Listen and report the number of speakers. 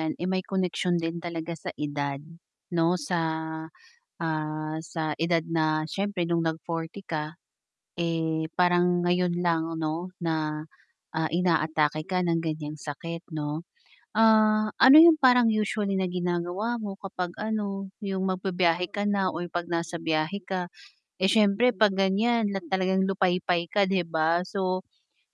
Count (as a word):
one